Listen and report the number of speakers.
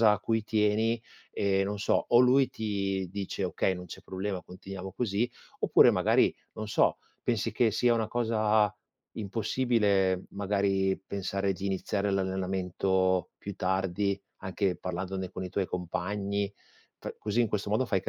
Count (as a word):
one